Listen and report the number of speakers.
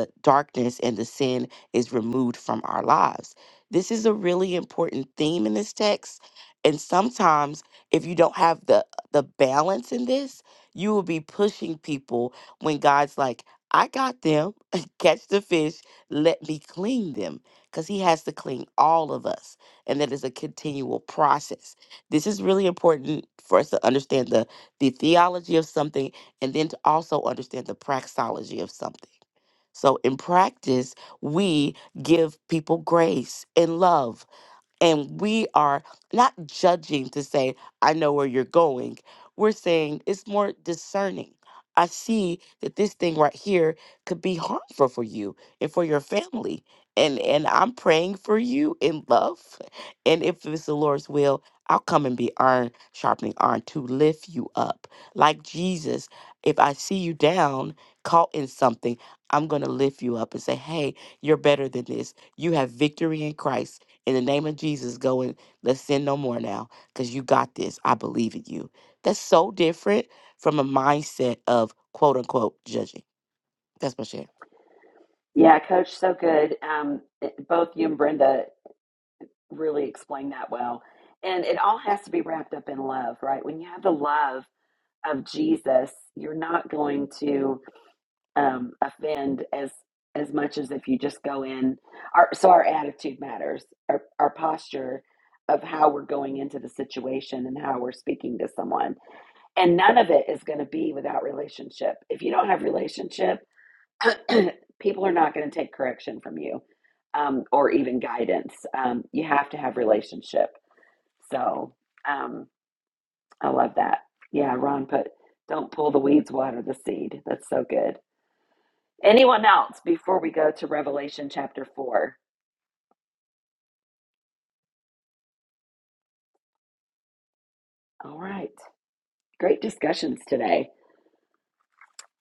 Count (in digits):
2